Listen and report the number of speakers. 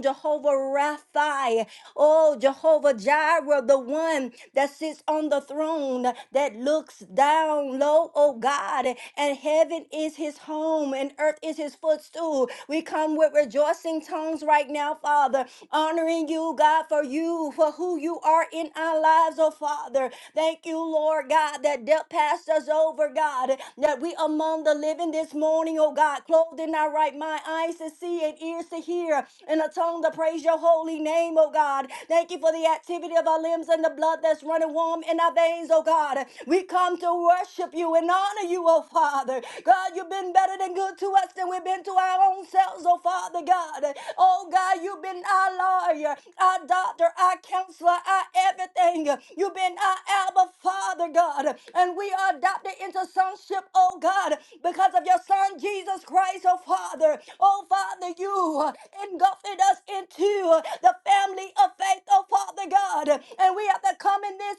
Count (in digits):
1